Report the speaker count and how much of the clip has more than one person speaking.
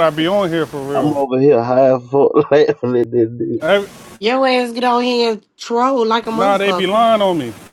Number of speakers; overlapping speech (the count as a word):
three, about 13%